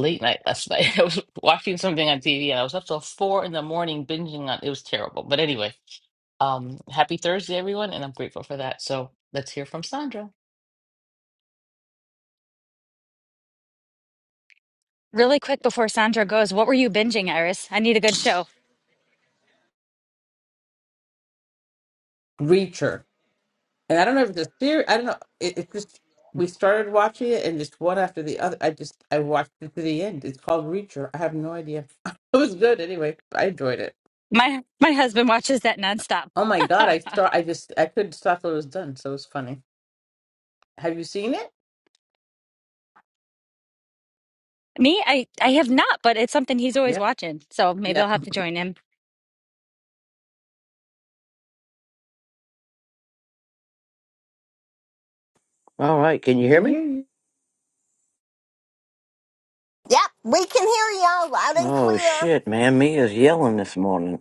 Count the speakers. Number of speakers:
four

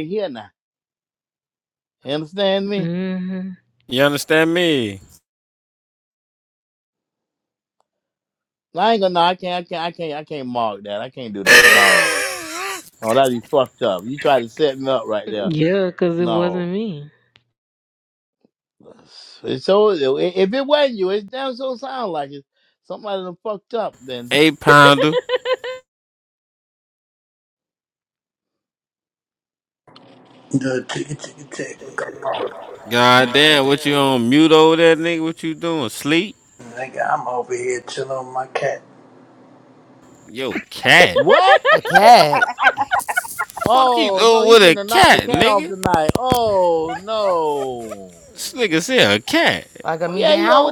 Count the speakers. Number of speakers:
five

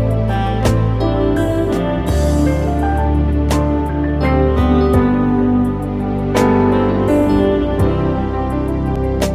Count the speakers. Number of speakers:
zero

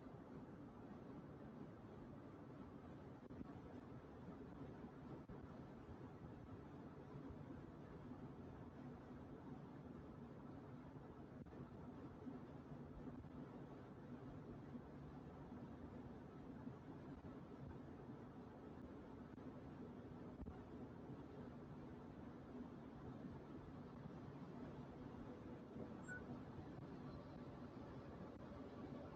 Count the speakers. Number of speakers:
zero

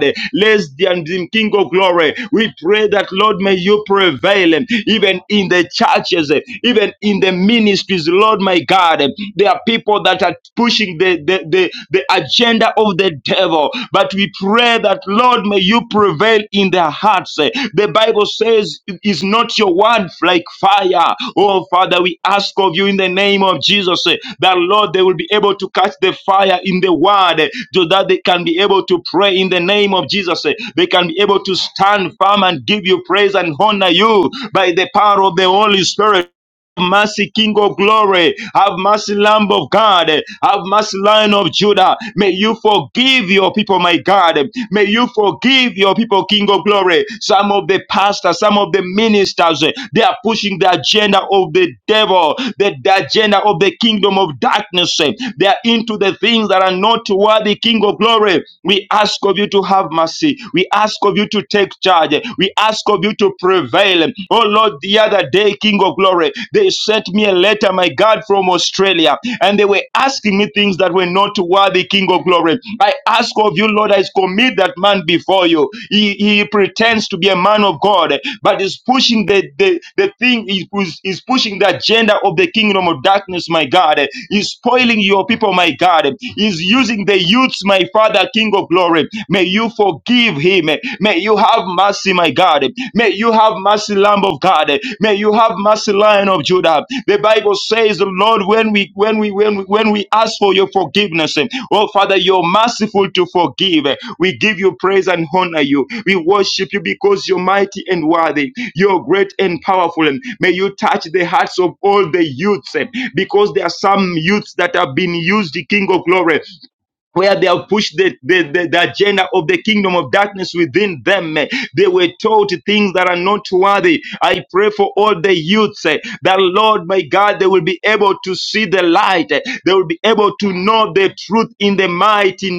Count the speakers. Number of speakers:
one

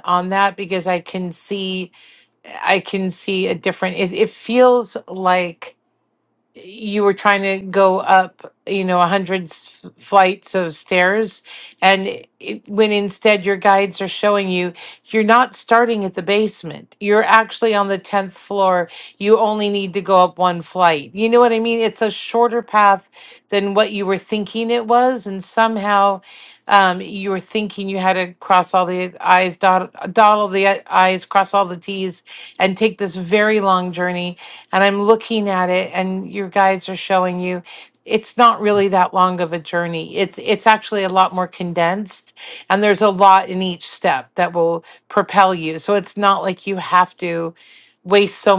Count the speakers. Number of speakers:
one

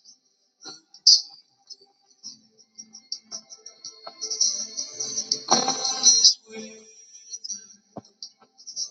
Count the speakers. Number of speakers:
zero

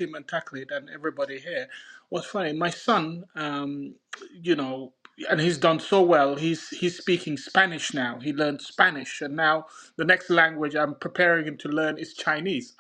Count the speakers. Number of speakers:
one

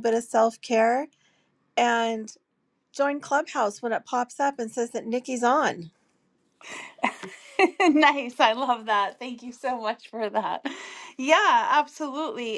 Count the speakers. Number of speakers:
two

